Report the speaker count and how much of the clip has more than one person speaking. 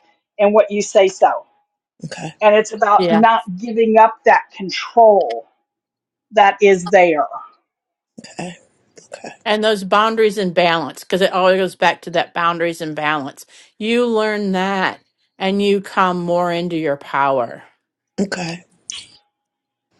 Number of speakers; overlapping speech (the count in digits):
3, about 1%